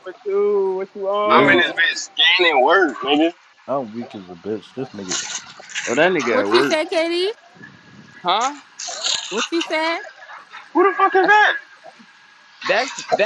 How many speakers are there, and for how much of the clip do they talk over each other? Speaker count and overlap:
5, about 8%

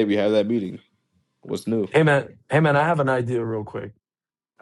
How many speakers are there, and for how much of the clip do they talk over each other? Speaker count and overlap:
2, no overlap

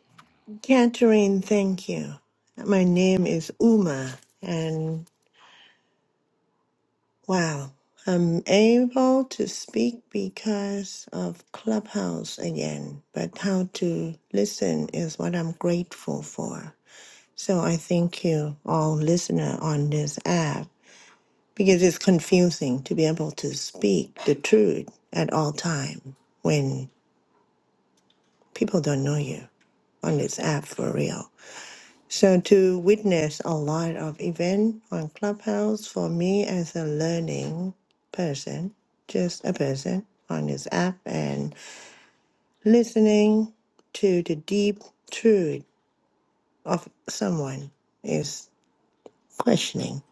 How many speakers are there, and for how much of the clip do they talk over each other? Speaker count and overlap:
1, no overlap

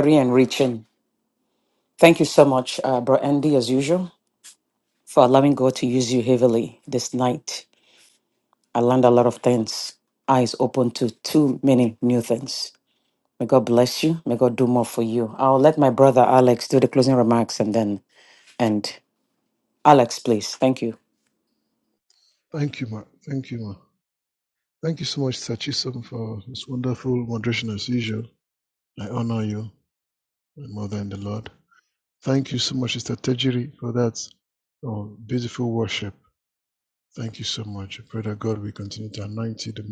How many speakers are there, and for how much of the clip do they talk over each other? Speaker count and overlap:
2, no overlap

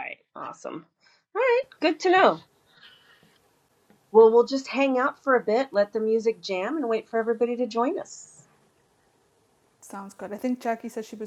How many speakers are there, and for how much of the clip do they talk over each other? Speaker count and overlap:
2, no overlap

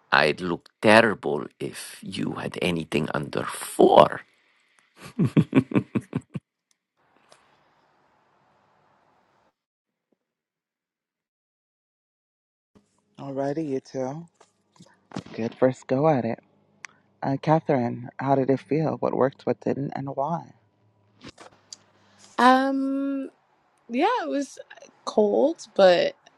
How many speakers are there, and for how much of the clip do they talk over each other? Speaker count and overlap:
3, no overlap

